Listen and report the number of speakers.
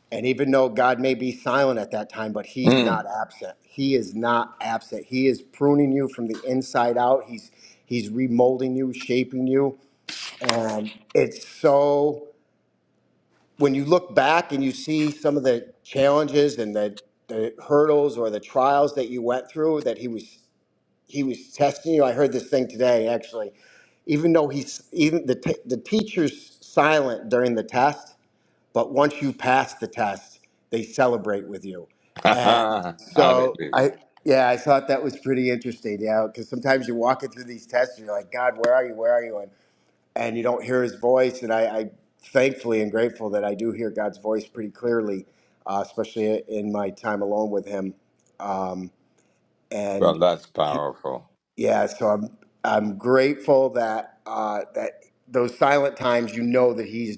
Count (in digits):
2